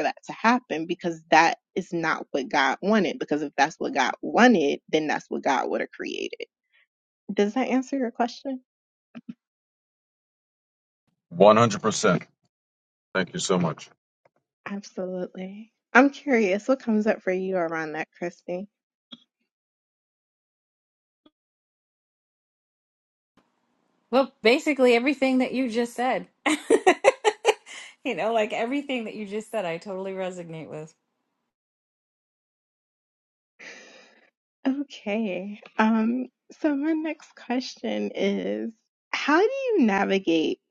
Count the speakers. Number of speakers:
three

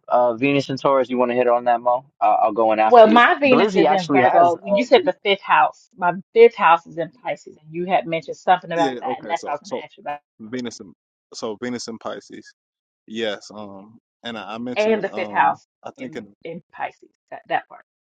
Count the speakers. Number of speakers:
three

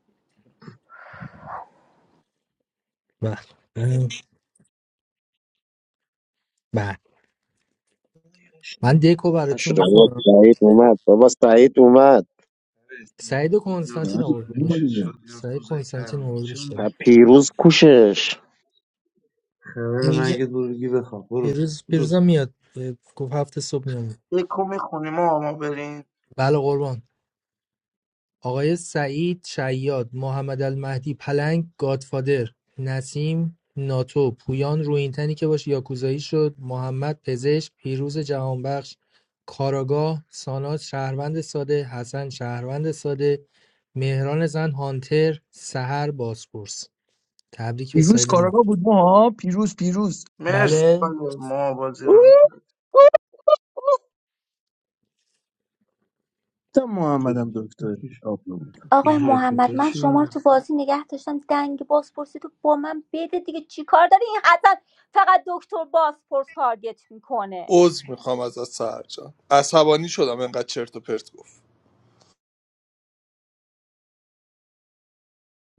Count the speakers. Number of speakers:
eight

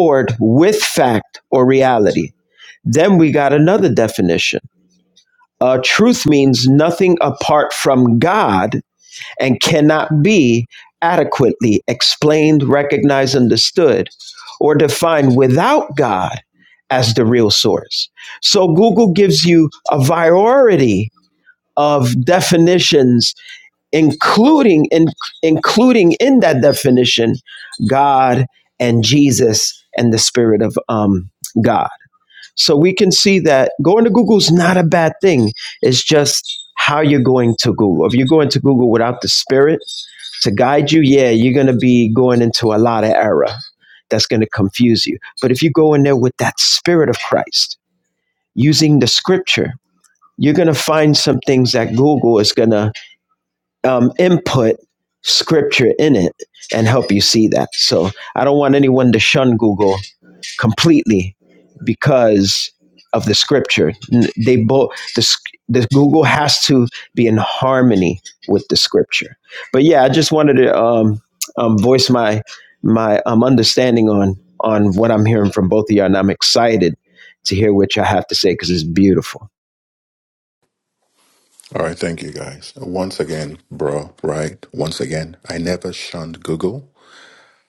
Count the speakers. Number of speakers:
two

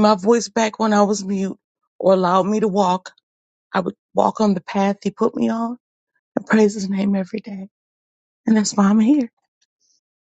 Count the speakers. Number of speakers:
one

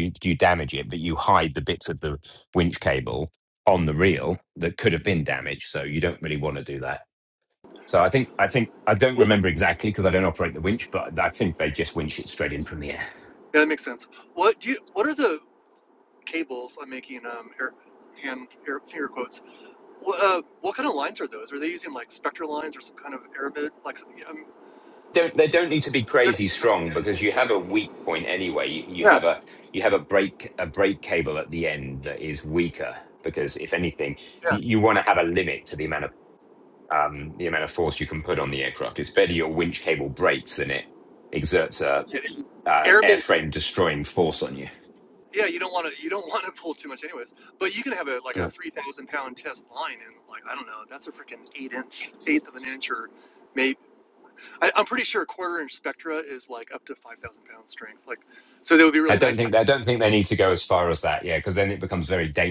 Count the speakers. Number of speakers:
two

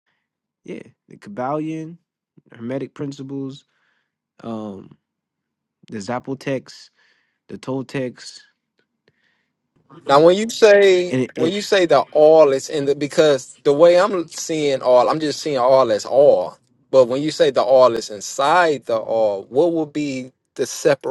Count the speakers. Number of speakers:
two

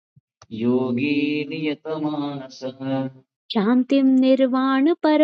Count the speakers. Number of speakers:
two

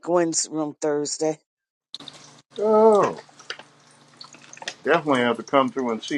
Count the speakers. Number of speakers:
two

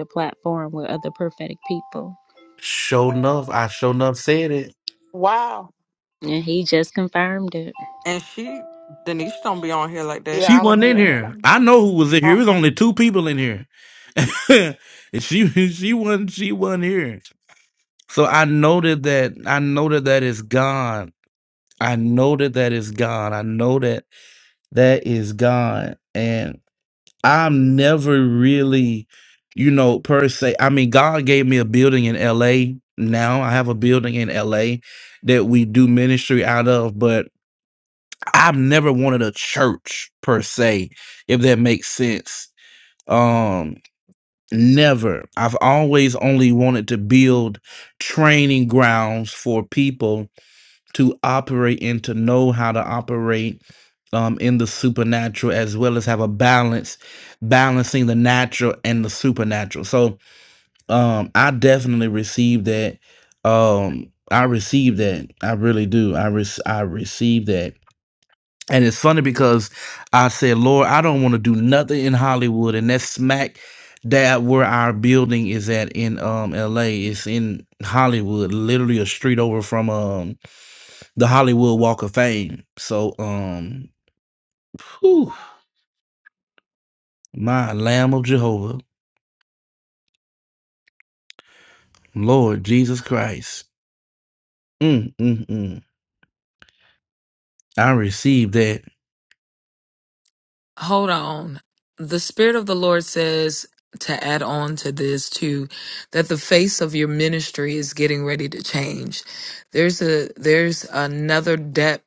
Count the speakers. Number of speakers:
five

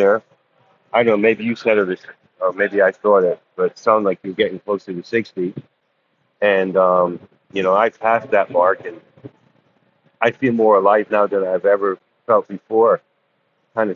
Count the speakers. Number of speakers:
one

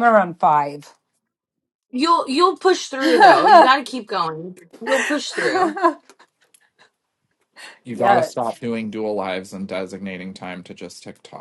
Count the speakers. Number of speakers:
three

